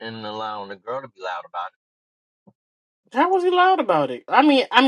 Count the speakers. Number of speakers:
two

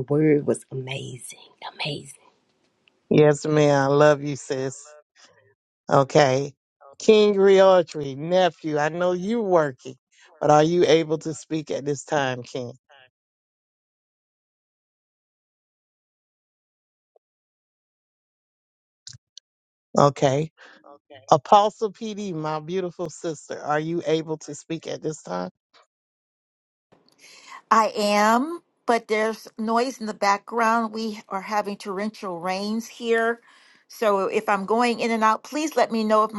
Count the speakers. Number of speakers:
three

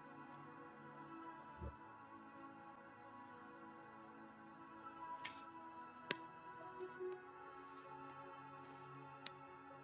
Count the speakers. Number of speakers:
zero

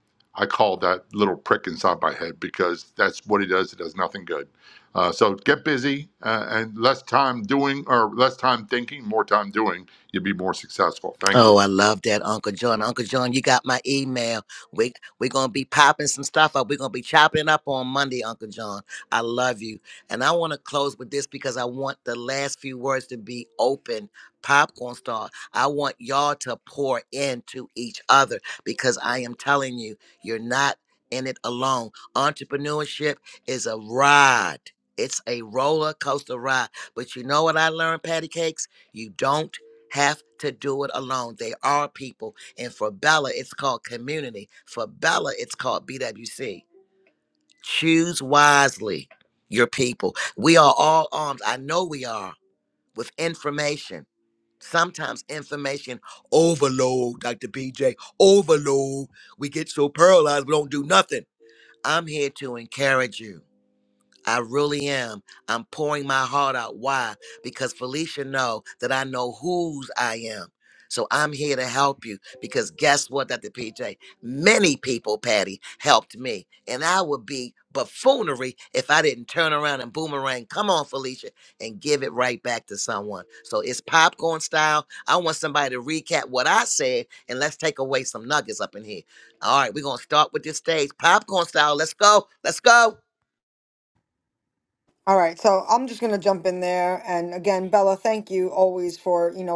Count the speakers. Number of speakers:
three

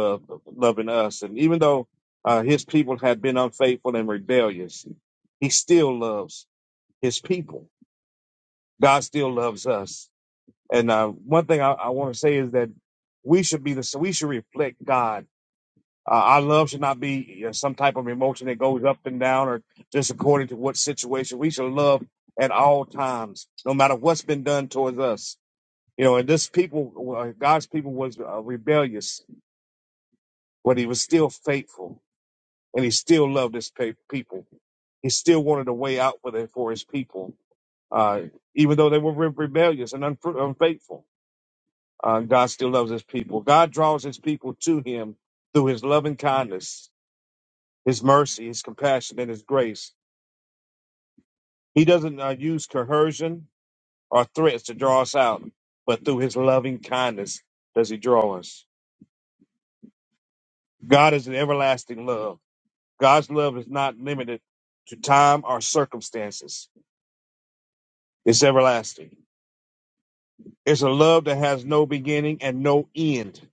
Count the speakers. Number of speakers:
one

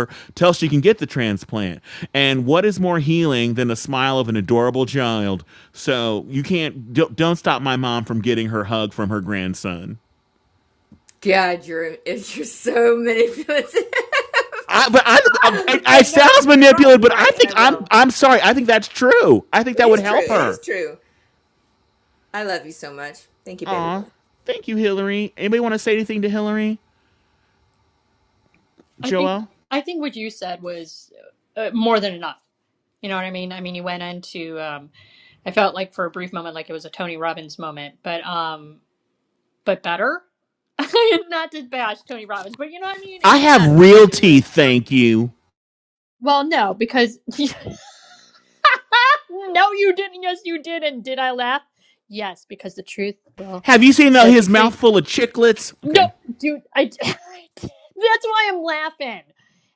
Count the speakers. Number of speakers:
three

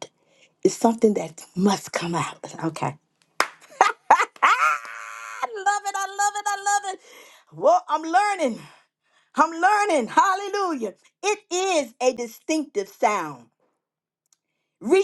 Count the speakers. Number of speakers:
one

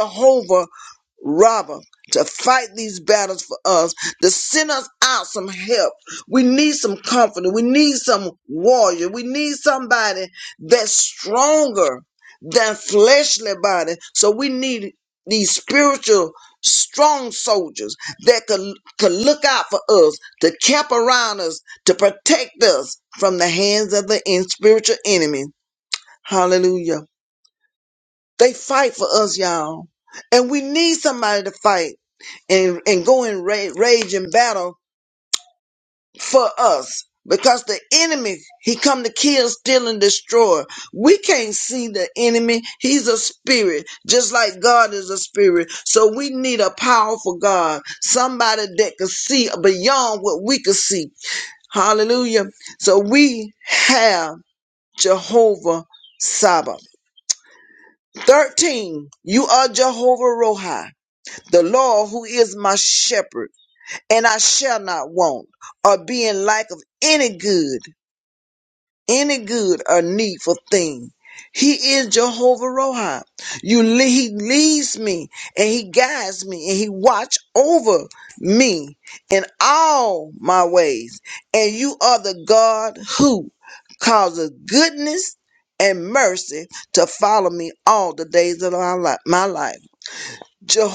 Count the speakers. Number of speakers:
one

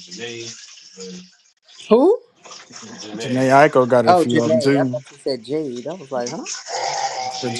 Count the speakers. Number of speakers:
three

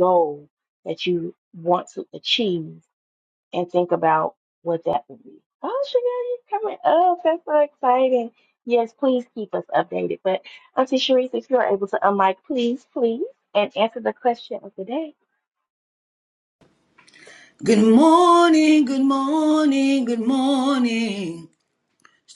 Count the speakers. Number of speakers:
two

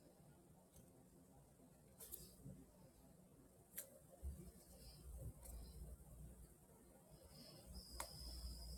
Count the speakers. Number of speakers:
zero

